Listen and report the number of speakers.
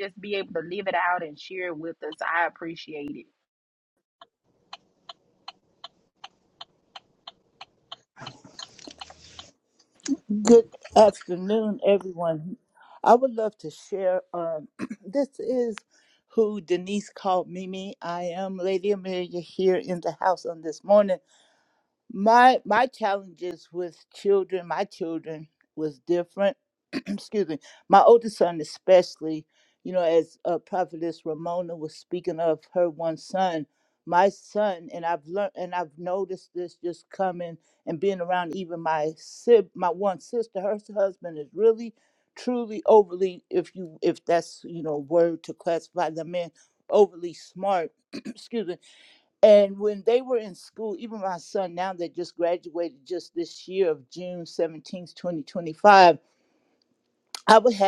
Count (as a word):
two